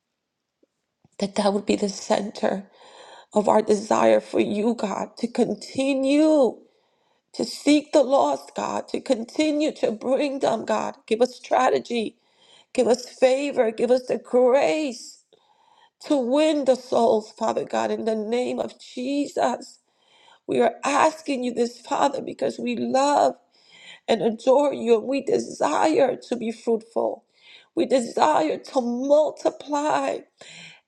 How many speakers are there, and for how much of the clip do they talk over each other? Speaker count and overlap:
1, no overlap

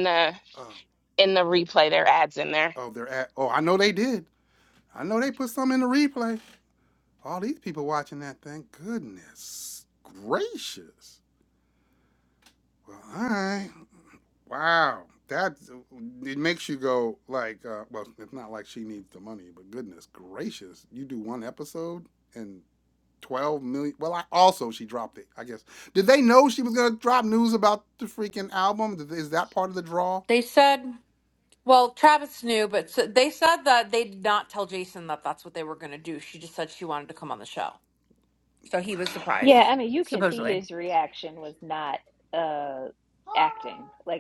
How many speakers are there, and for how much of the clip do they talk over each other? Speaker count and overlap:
4, about 2%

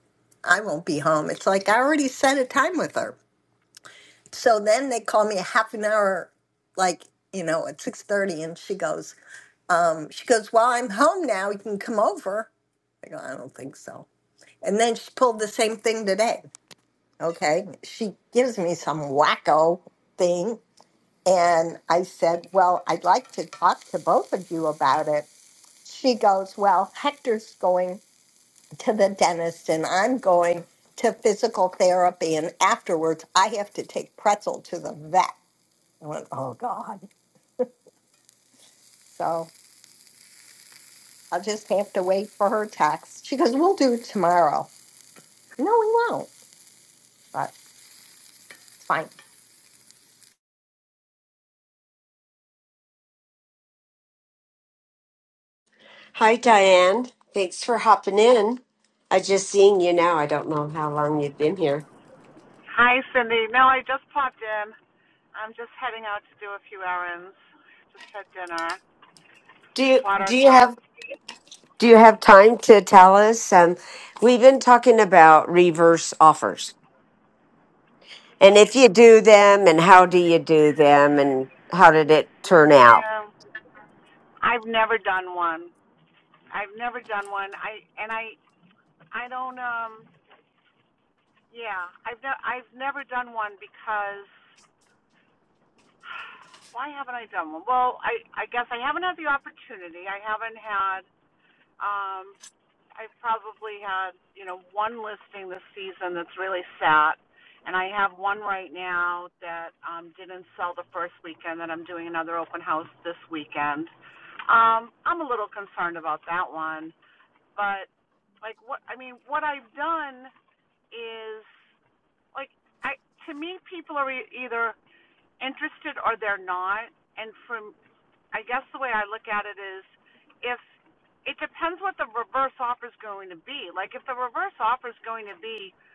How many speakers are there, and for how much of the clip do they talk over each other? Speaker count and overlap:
3, about 1%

